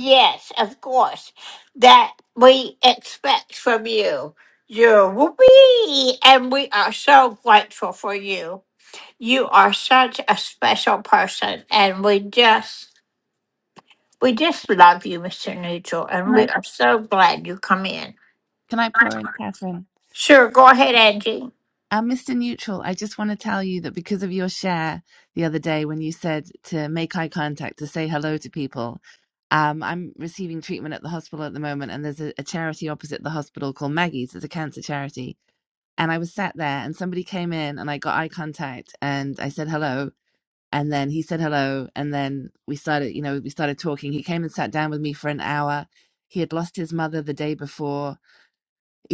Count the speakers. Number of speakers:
2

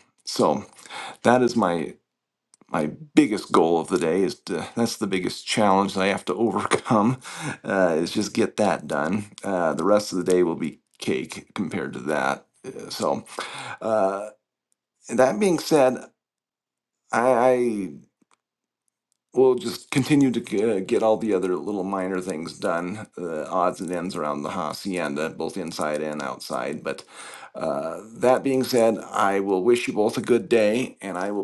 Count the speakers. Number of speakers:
1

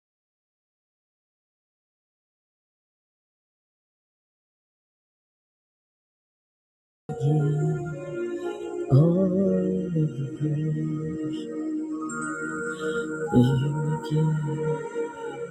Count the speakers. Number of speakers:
1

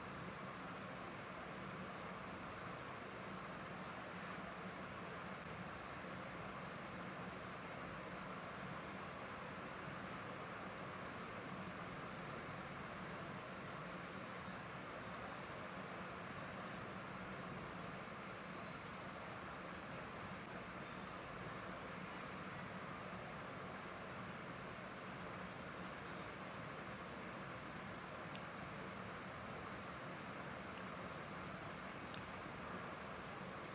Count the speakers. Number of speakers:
0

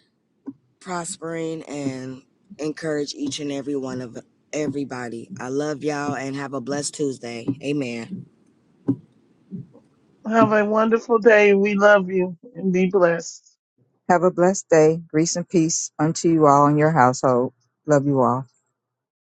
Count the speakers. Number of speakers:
3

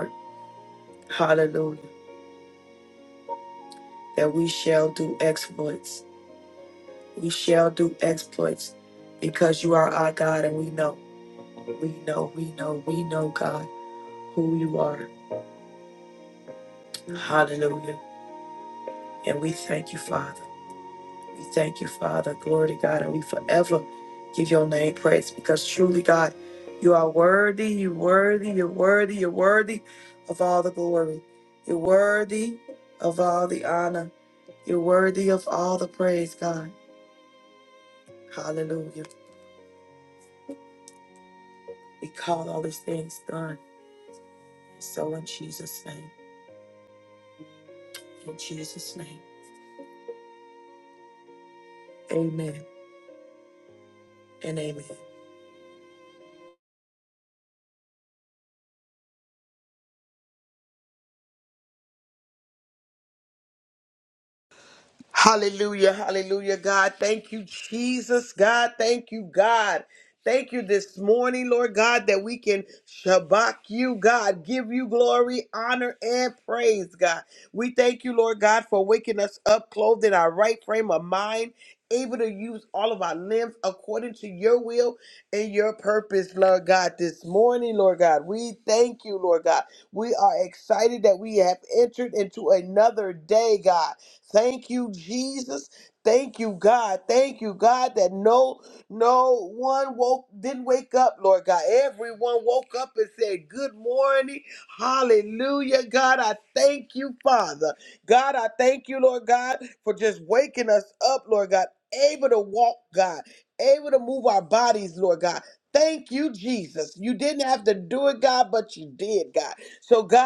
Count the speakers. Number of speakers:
2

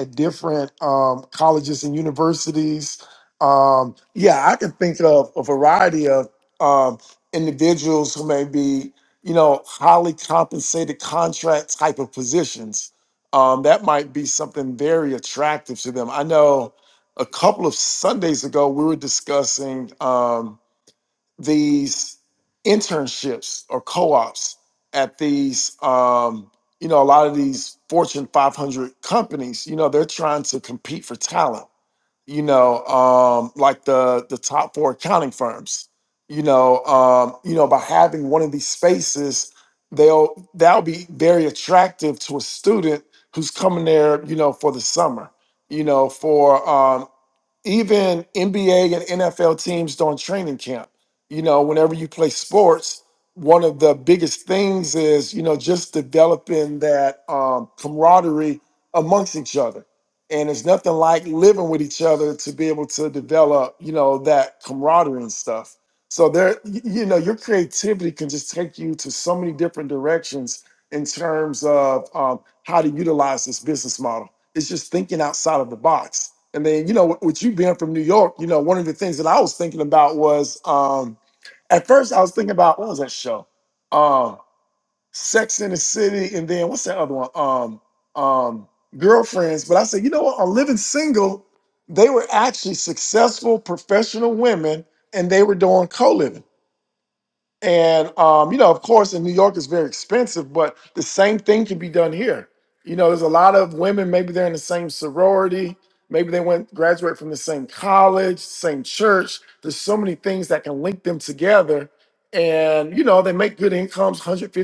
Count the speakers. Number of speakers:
1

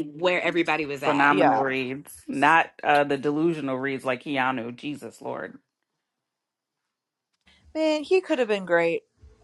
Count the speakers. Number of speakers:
3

